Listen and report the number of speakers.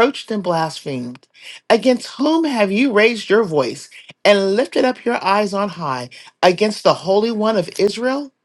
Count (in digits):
1